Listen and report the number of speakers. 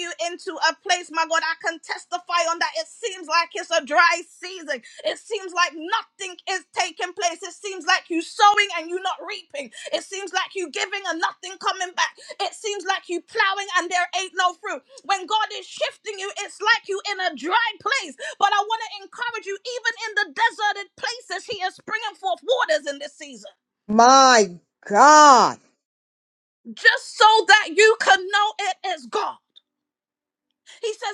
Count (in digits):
2